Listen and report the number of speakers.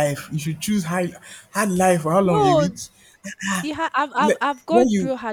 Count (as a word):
two